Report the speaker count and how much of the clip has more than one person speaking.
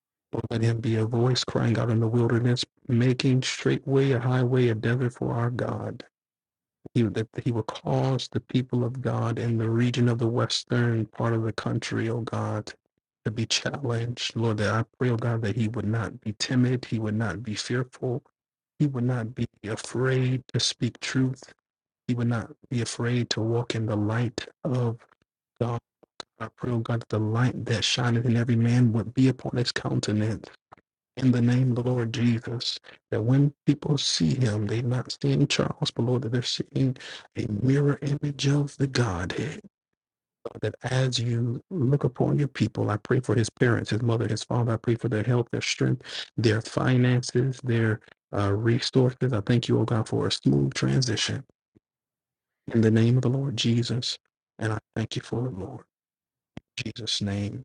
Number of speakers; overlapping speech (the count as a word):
one, no overlap